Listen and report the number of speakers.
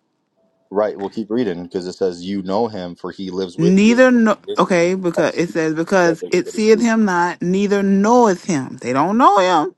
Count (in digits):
2